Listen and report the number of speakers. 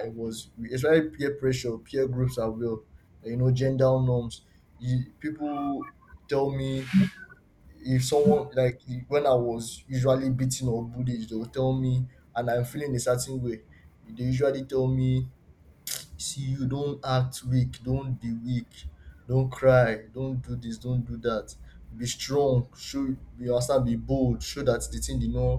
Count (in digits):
1